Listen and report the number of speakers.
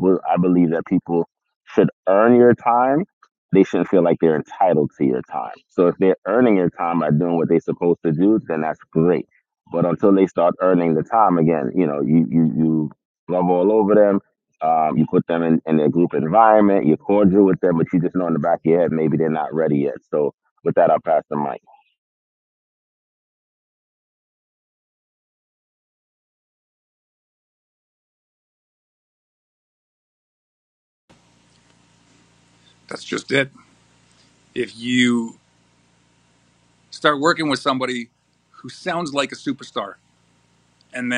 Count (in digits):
2